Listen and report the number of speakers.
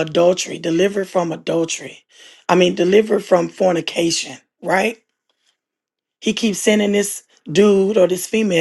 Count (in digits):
1